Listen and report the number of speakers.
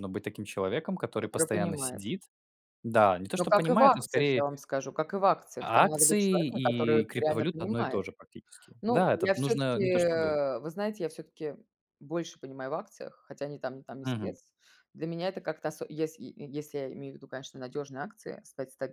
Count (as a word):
two